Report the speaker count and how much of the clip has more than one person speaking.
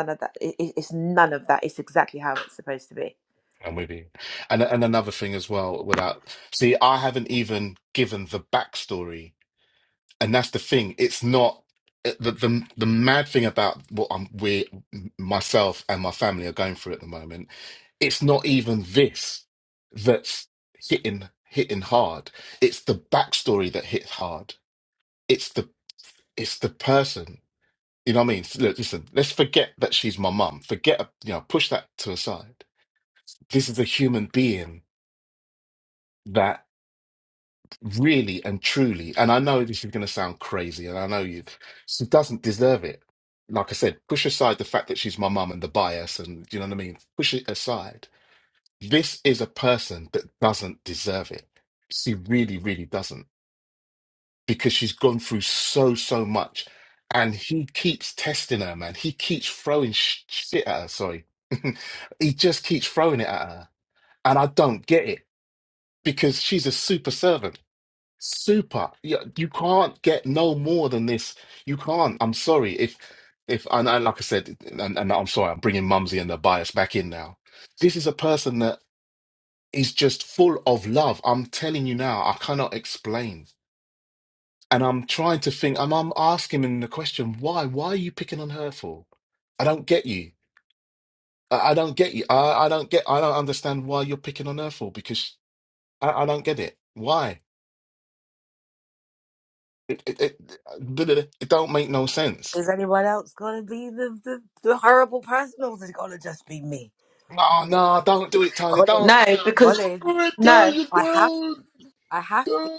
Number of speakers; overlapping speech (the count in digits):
3, about 1%